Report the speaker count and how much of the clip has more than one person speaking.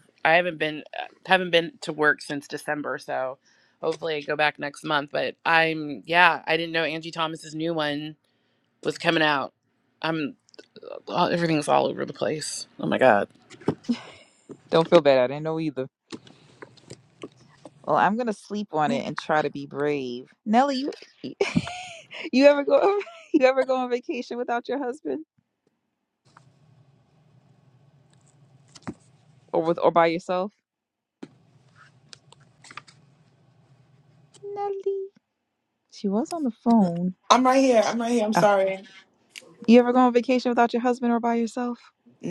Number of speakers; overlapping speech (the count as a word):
three, under 1%